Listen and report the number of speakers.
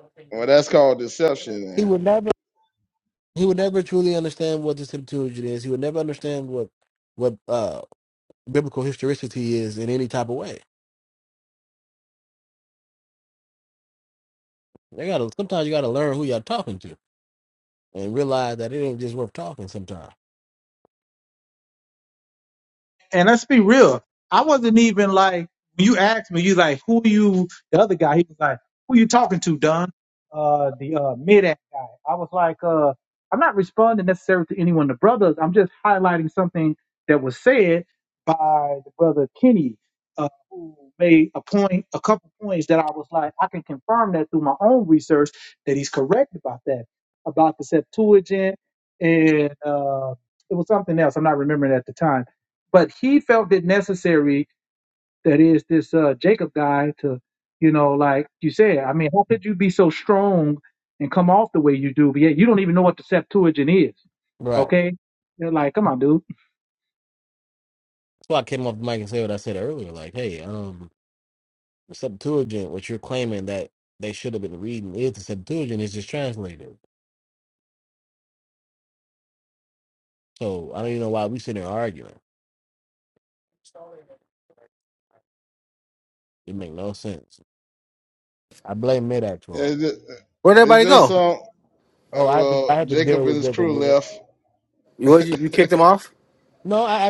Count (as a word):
four